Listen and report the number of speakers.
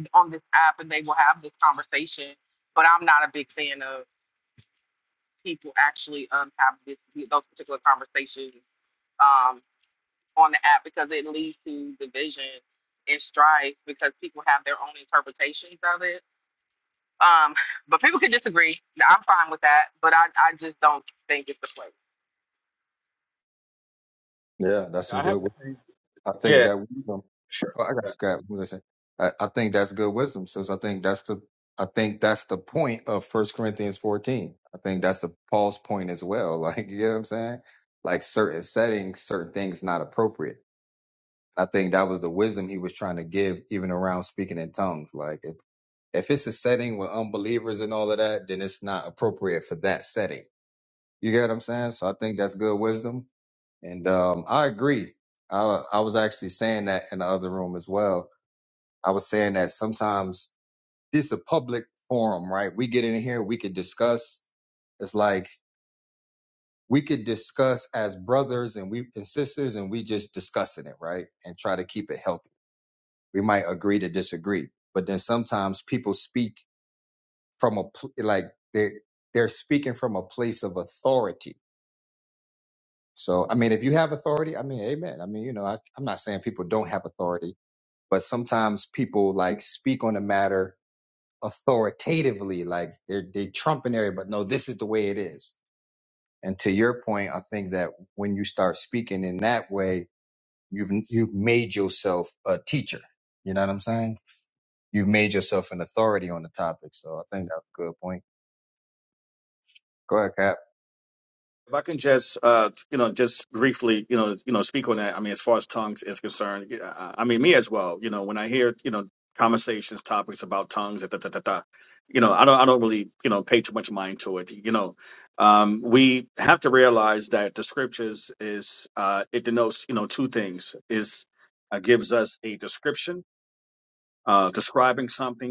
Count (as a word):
three